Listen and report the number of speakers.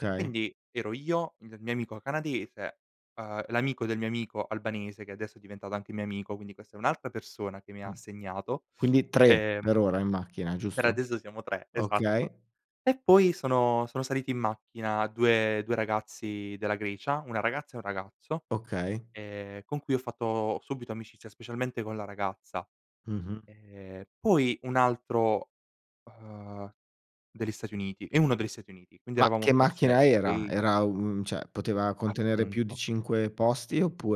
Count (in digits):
2